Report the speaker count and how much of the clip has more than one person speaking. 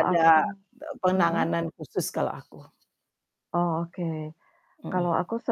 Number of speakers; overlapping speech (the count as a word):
two, about 16%